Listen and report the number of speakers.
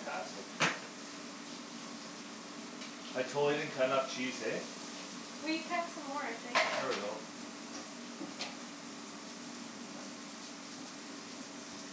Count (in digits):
2